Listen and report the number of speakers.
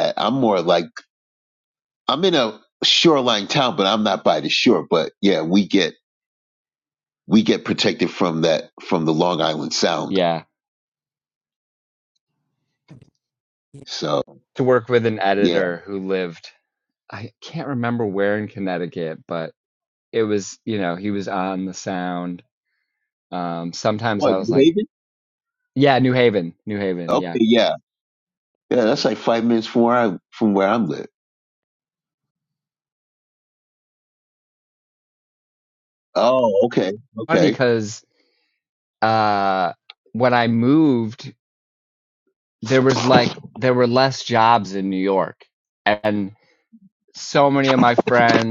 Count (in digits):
2